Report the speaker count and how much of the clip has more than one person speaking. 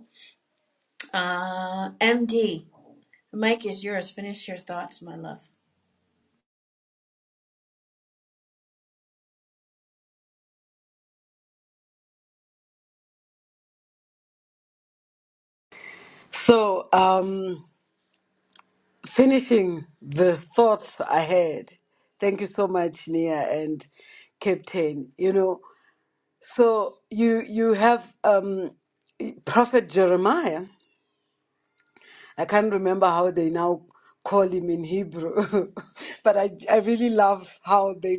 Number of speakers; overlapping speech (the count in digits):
2, no overlap